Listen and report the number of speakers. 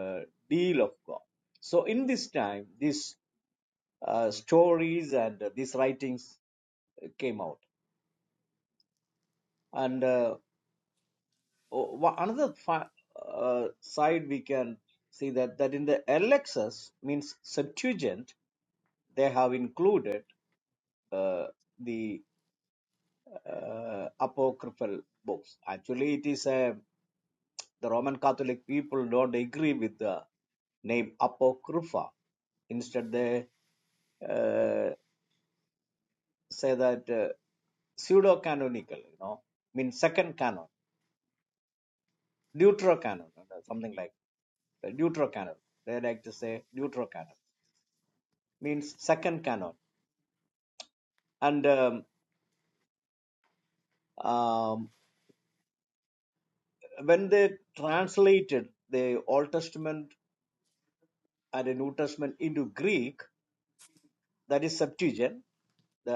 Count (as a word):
one